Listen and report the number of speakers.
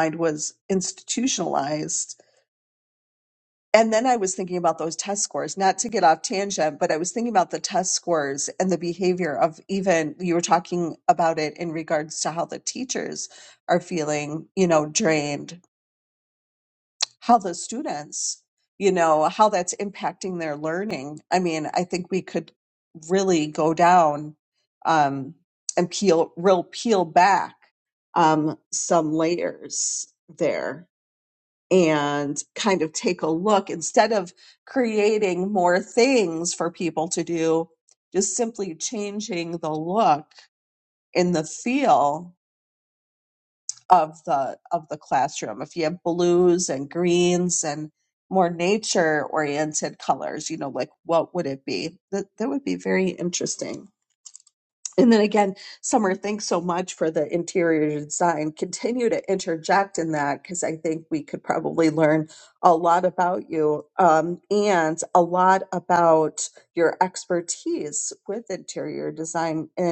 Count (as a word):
one